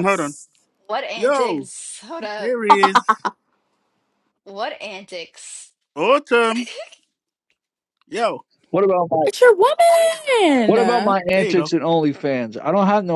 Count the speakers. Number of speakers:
four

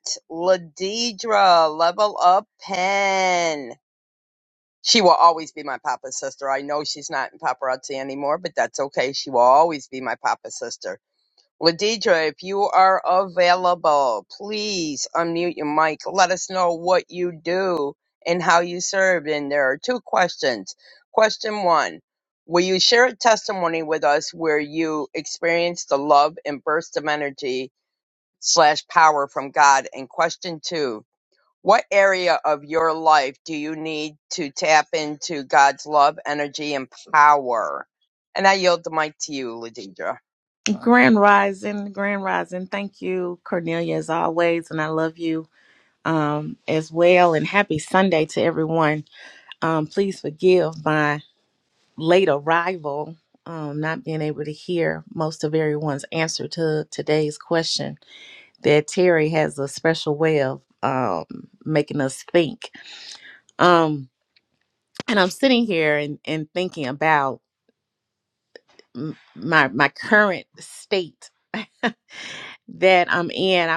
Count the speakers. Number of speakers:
two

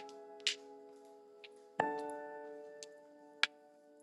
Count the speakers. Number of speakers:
zero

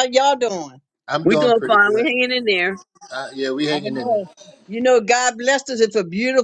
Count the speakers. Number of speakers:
three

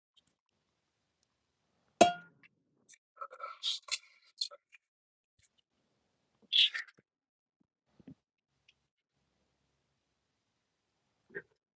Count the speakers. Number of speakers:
zero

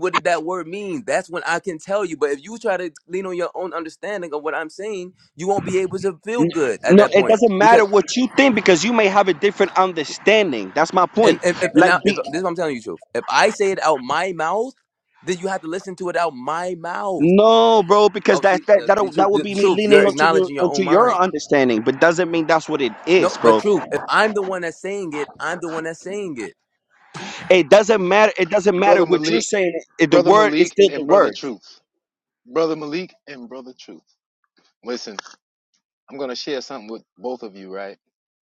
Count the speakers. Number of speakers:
three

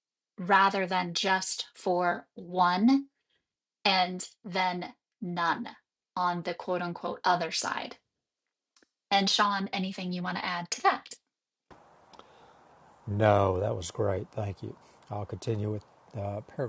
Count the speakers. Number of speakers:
two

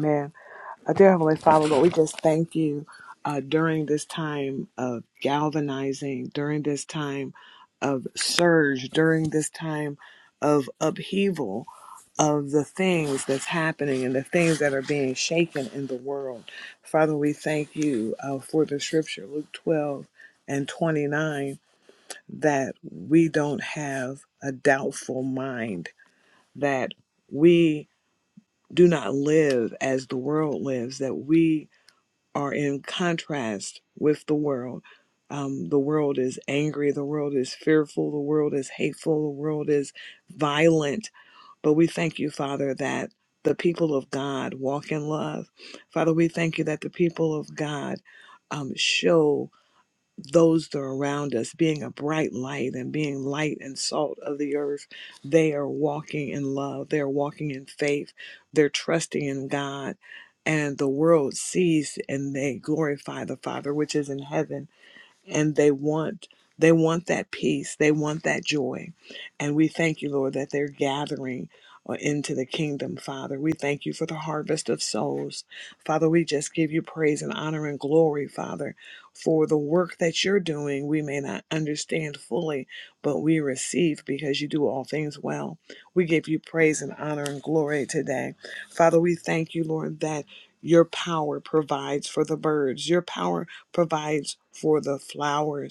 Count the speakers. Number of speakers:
one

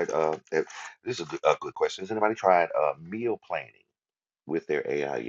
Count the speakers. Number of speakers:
one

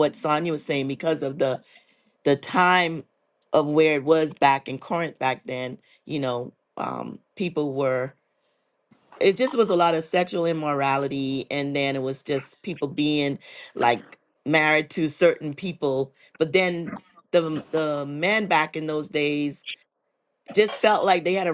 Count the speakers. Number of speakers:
one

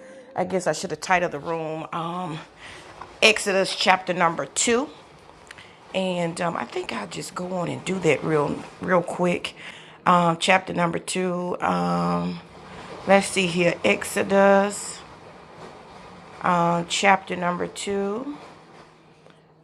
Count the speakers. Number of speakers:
one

